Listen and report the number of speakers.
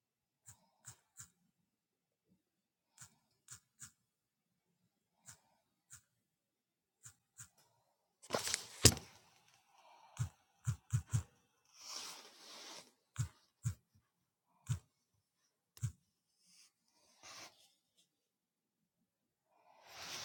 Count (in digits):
0